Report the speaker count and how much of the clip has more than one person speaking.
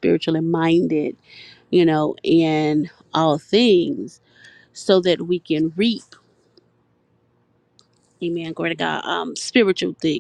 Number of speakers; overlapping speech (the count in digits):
1, no overlap